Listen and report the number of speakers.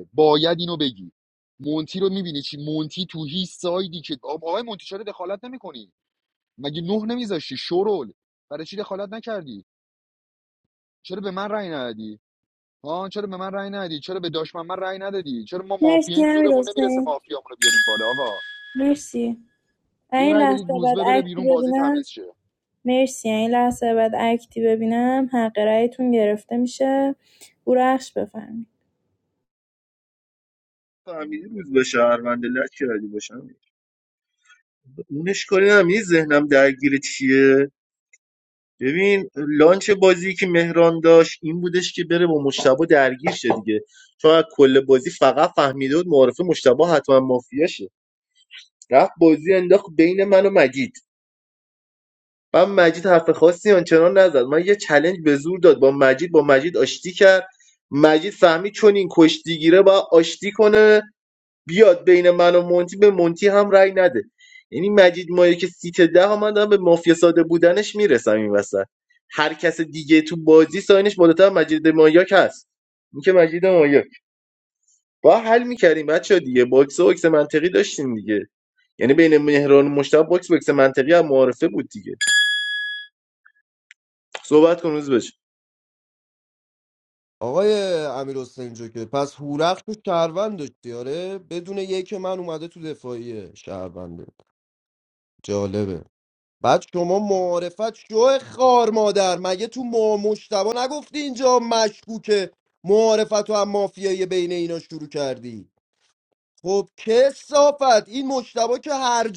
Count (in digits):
4